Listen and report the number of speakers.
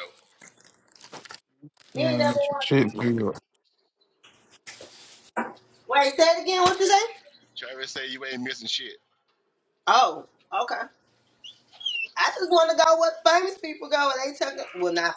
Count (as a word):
three